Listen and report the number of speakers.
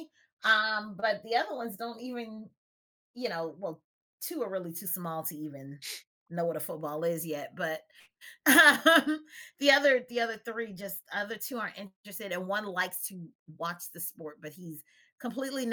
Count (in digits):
1